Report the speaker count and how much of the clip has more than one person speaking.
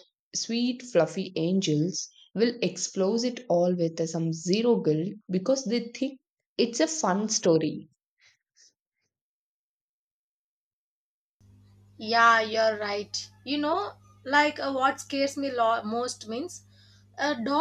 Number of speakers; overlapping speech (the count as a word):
two, no overlap